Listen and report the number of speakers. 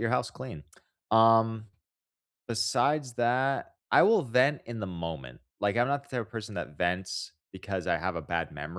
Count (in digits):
1